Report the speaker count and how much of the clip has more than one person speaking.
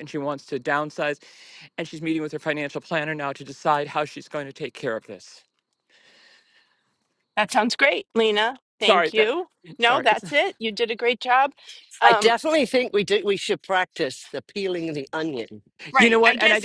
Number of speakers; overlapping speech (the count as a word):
three, about 11%